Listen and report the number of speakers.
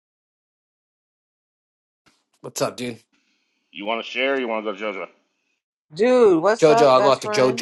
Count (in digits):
3